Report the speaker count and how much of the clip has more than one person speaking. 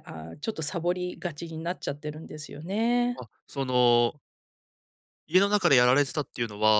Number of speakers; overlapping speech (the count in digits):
2, under 1%